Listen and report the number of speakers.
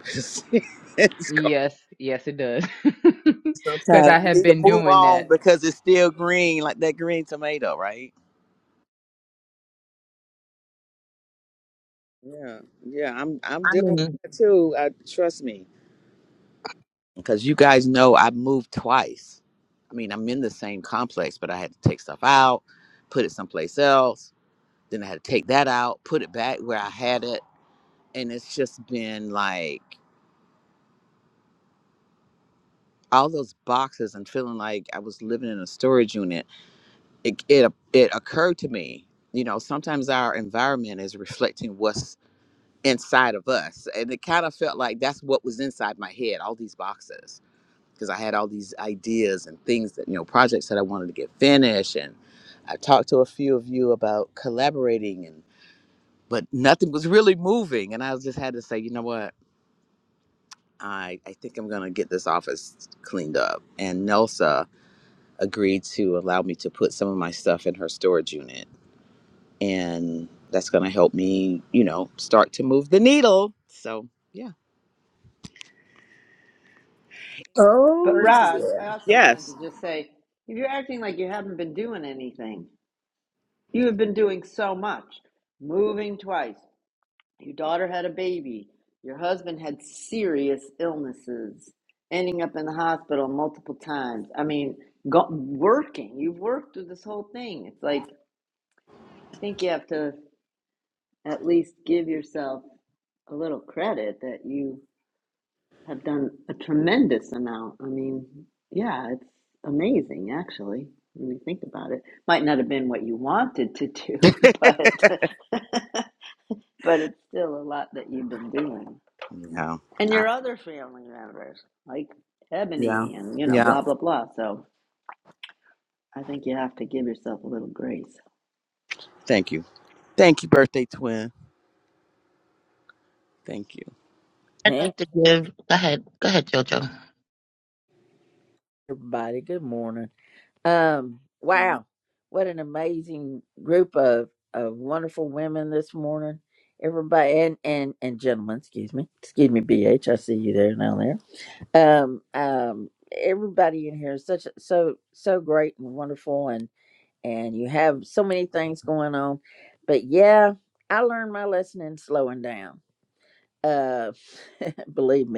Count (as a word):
five